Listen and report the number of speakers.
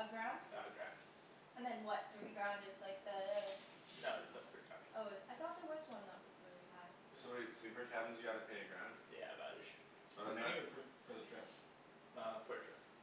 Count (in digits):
4